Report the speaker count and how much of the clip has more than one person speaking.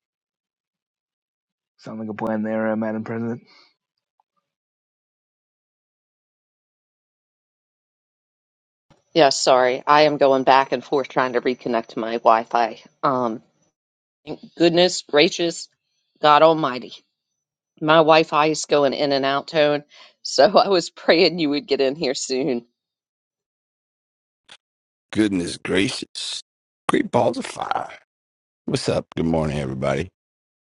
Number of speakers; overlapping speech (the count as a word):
three, no overlap